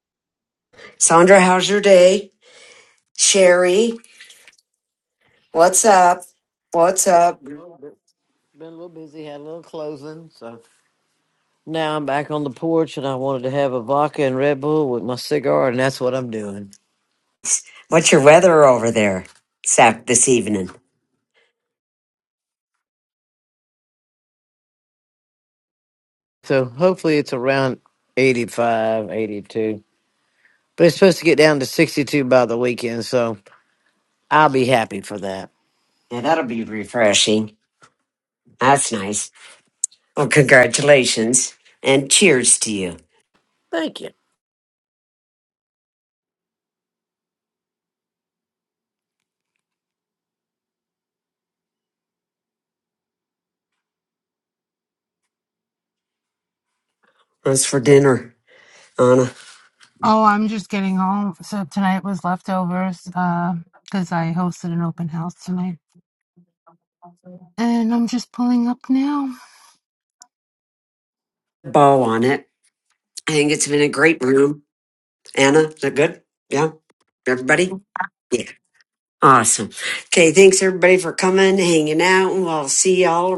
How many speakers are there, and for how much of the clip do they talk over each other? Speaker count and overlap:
three, no overlap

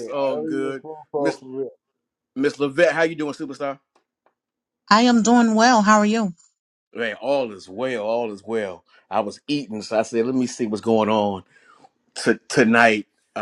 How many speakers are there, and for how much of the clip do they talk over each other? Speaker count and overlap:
three, about 7%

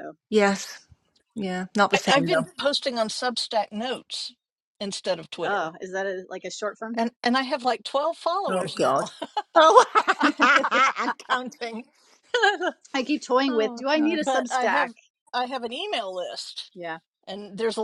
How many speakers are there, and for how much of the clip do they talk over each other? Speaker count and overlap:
three, about 16%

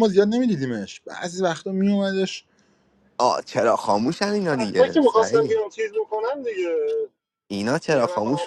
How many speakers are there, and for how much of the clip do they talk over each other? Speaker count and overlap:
three, about 19%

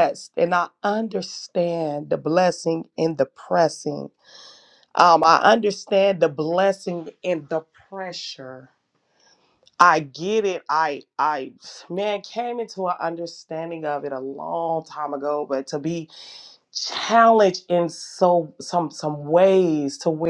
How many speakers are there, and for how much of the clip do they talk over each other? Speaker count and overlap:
one, no overlap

